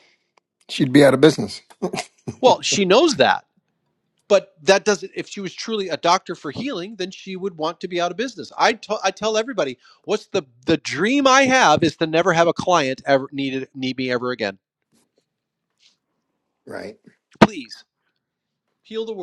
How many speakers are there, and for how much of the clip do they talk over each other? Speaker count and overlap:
2, no overlap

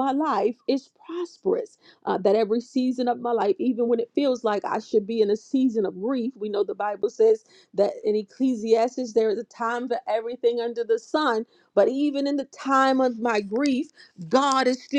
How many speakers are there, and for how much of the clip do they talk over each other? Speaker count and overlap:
1, no overlap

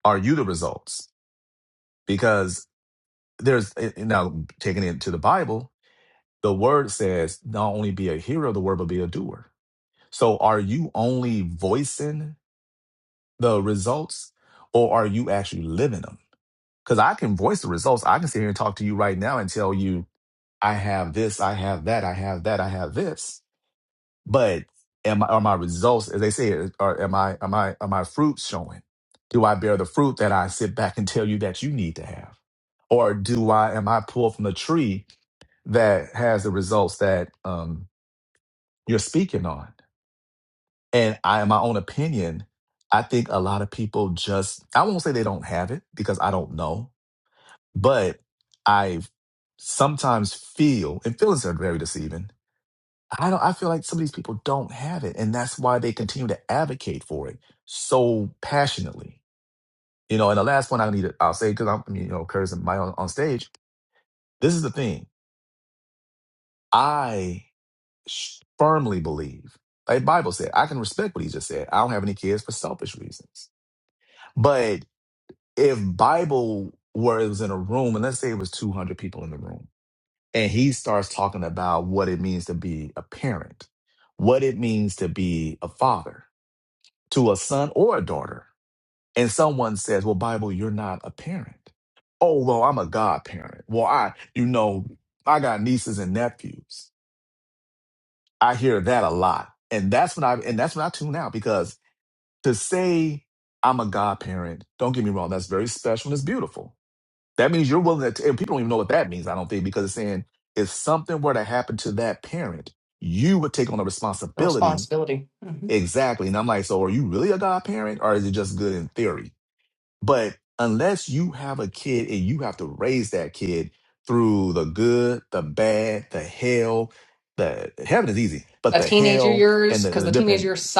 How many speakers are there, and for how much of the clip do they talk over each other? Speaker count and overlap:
2, about 2%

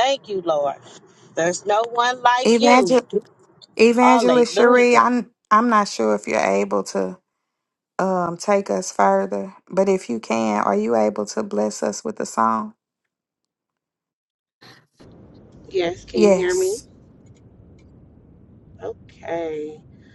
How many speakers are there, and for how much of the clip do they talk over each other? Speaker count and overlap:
3, about 9%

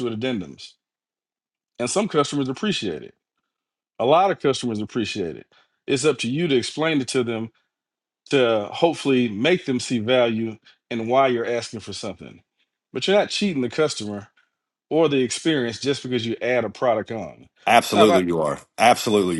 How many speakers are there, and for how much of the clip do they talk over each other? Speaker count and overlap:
2, about 2%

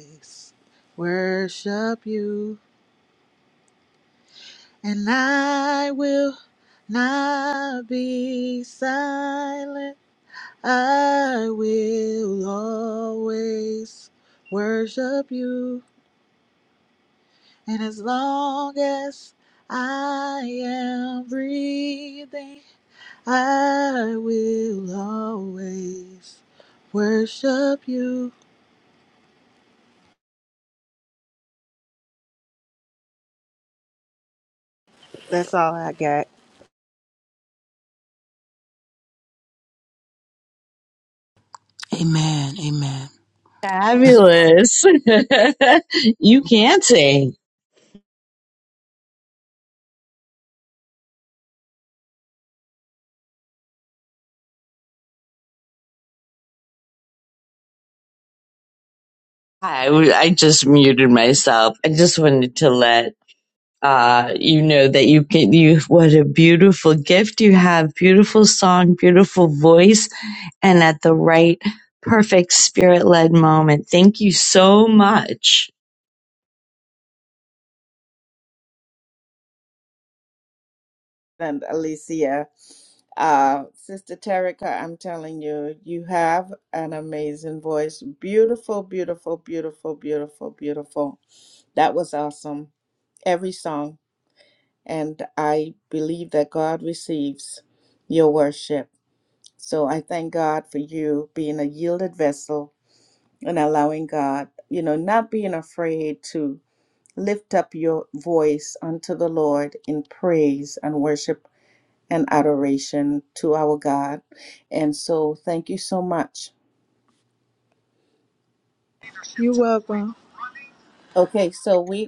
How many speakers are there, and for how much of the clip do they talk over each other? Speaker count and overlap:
4, no overlap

